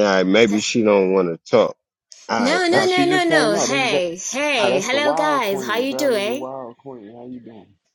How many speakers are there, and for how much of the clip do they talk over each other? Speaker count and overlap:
3, about 45%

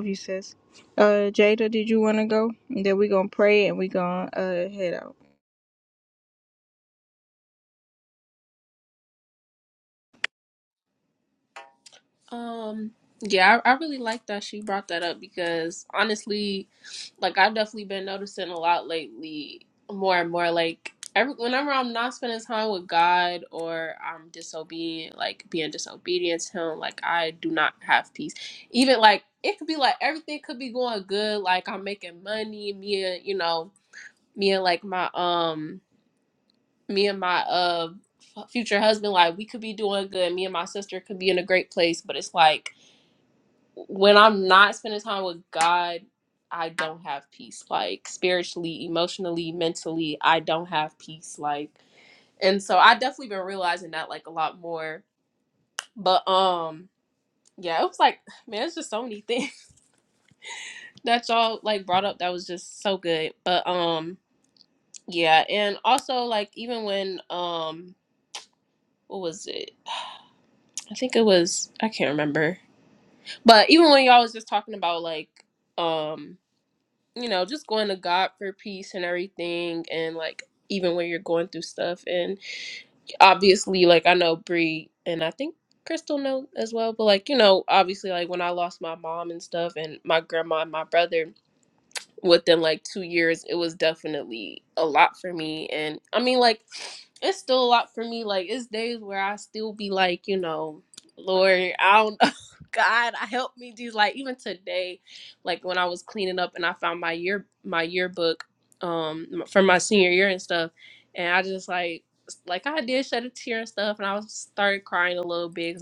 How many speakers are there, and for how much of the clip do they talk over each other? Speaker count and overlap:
2, no overlap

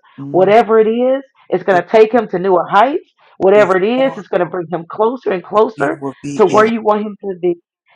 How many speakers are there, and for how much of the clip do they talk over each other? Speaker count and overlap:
2, about 23%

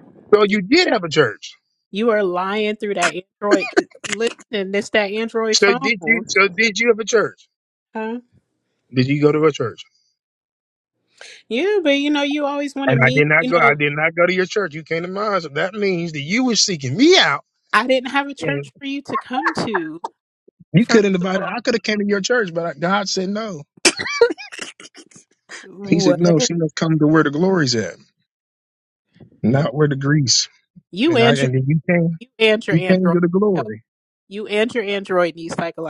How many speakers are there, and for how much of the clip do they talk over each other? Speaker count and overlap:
2, about 11%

